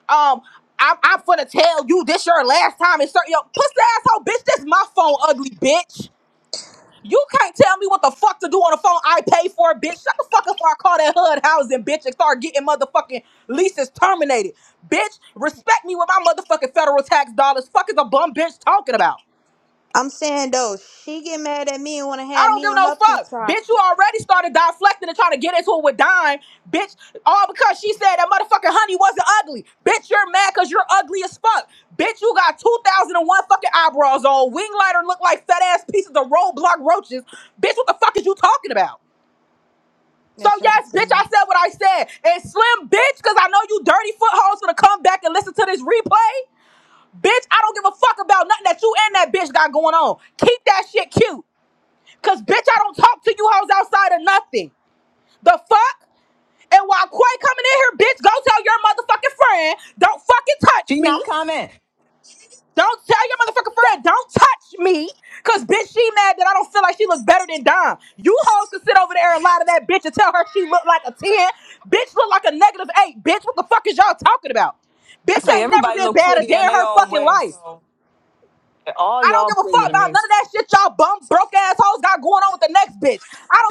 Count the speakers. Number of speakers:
3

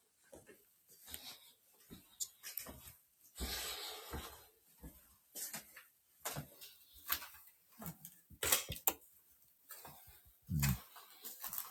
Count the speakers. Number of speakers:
0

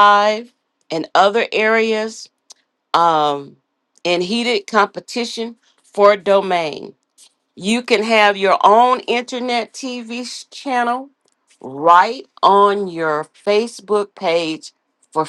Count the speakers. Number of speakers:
1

